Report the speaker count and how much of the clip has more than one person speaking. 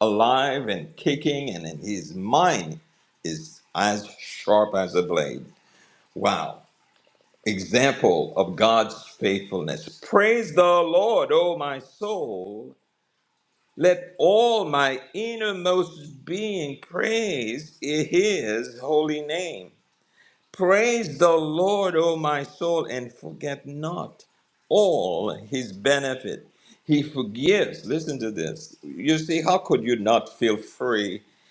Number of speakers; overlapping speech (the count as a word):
one, no overlap